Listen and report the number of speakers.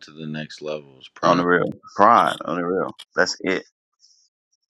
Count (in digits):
2